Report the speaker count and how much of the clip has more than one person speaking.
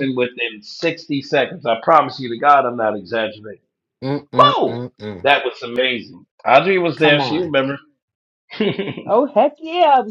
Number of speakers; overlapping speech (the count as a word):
three, about 10%